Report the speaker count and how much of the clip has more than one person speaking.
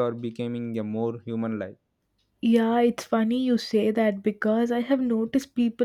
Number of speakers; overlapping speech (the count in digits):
2, no overlap